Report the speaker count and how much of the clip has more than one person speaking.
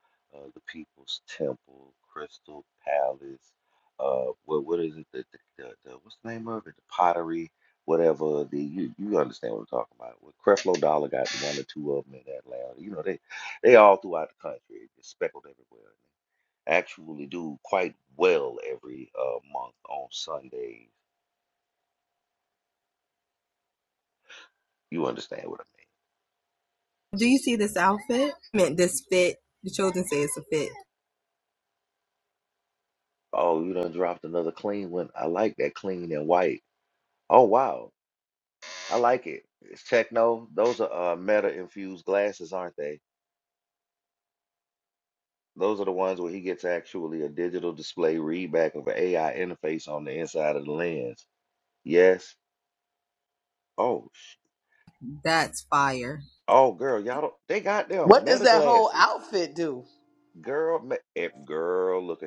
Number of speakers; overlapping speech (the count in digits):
3, about 2%